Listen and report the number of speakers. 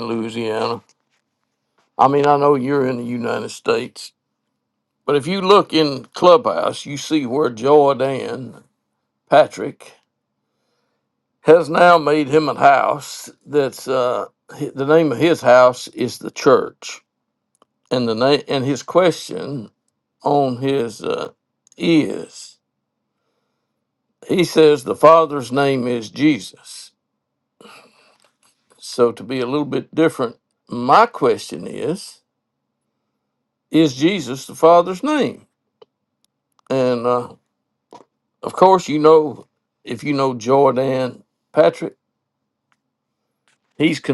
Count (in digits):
1